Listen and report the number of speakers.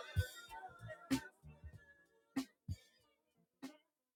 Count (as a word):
zero